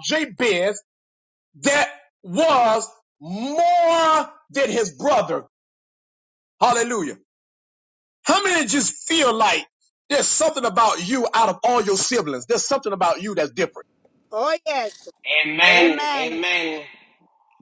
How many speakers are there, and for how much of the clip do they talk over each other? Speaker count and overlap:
3, about 4%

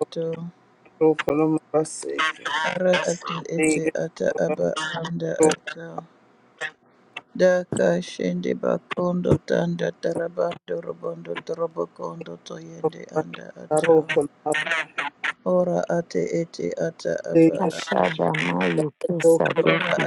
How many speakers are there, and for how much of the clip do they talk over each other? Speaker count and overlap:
3, about 13%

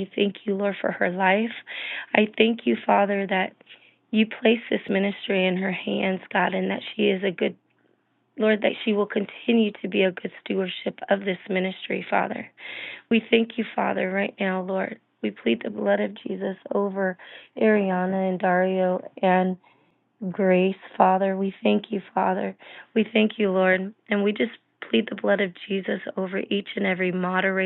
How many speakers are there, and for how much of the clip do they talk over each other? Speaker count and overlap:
1, no overlap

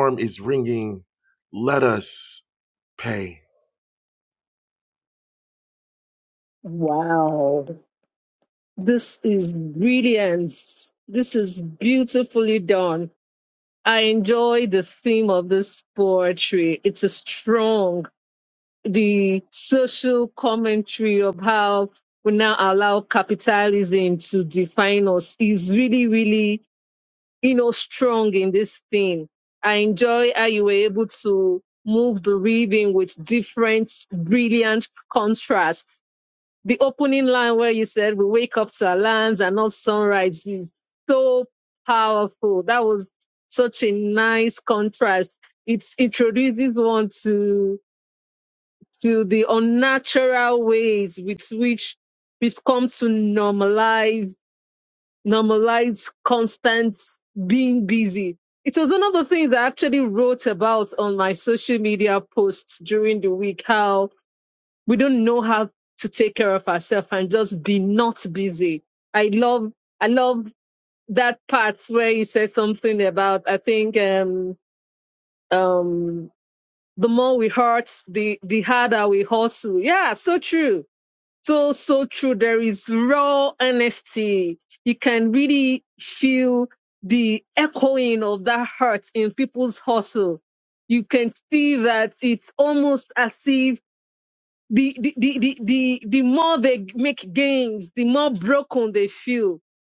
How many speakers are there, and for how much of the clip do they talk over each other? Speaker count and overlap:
2, no overlap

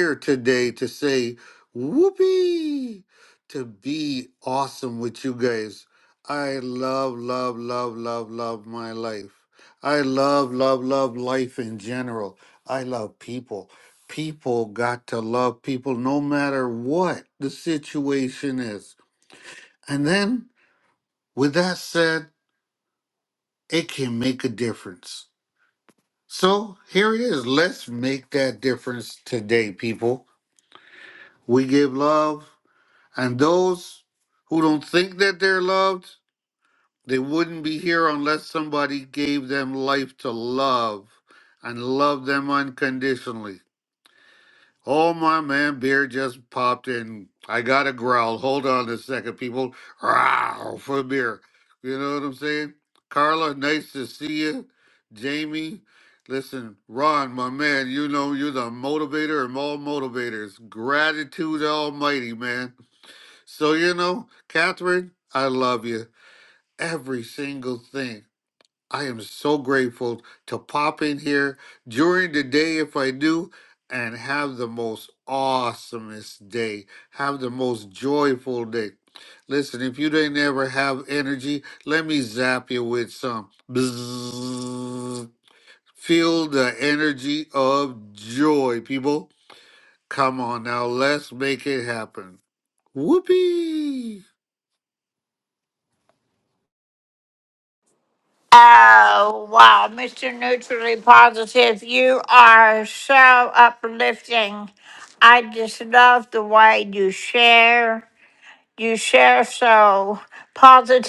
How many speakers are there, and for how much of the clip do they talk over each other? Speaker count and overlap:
2, no overlap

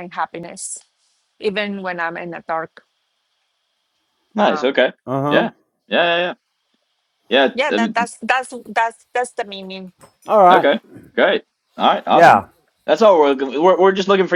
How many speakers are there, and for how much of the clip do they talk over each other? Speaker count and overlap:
3, about 10%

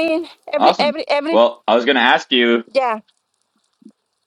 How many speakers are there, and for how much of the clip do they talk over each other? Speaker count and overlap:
2, about 10%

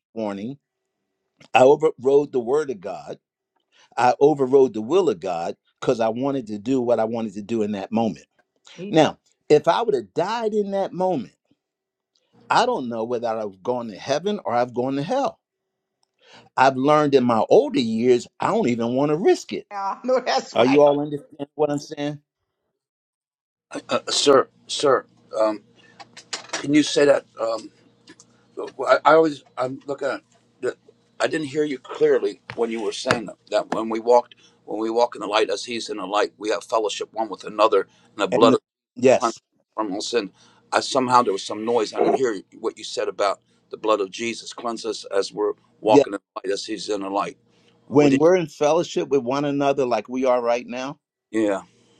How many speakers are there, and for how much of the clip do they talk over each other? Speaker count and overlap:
3, about 2%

